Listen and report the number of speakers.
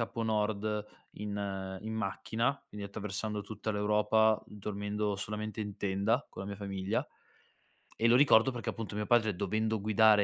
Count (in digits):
1